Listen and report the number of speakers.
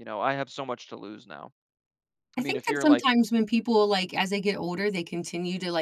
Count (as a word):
two